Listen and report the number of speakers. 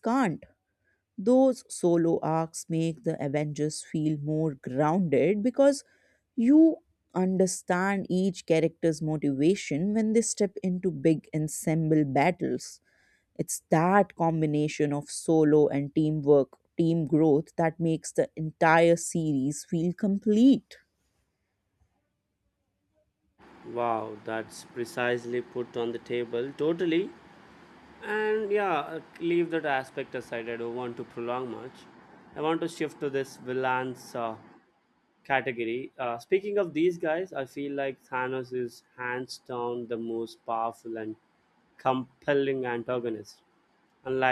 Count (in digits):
2